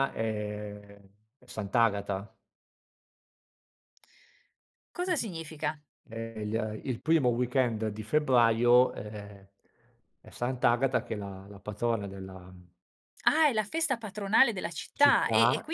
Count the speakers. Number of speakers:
two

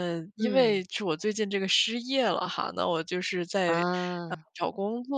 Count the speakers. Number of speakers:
two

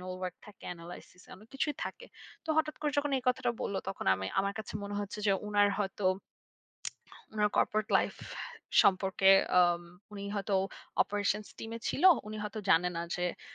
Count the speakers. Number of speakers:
one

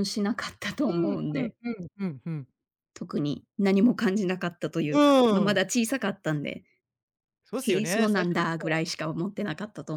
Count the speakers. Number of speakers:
two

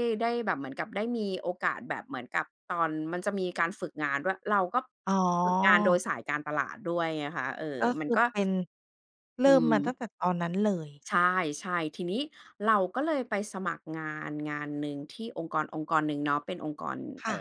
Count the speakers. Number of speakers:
two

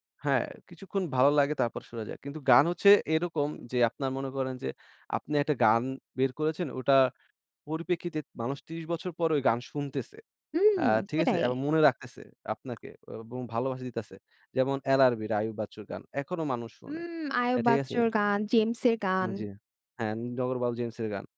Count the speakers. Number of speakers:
two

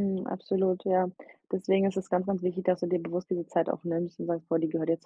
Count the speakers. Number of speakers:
one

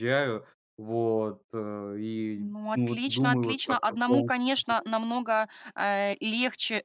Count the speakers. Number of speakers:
two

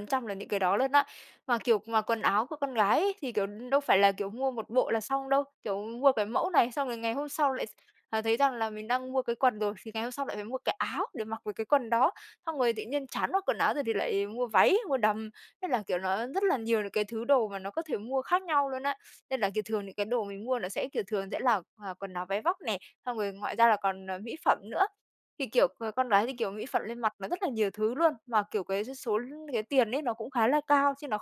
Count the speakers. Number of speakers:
one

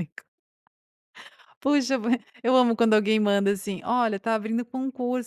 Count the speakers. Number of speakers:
one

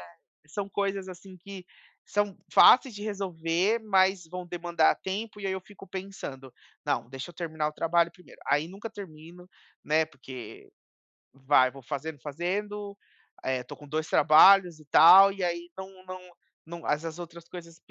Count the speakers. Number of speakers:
one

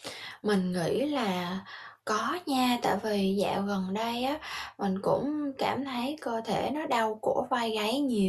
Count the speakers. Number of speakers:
one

